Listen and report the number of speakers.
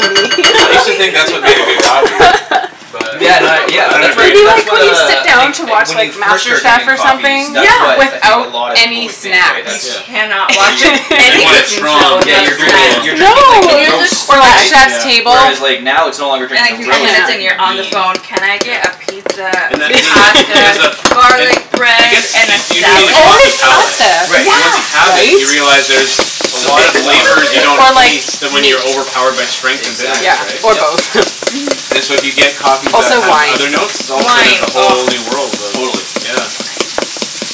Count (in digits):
4